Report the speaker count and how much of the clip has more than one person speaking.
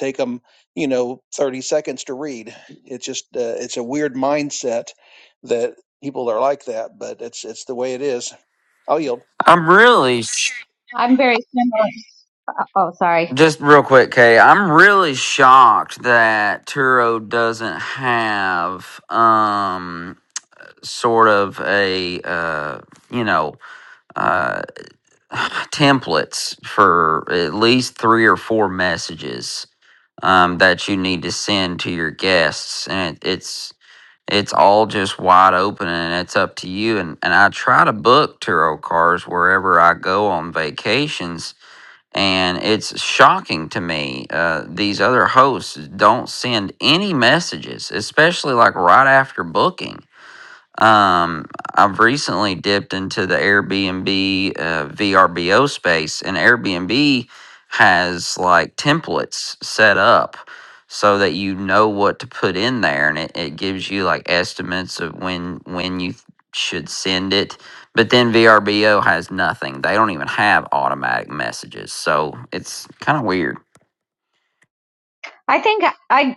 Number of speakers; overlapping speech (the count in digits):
3, under 1%